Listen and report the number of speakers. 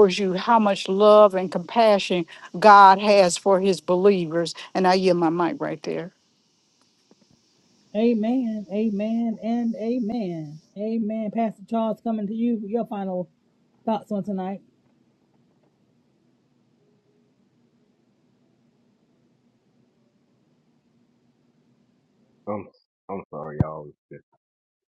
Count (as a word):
three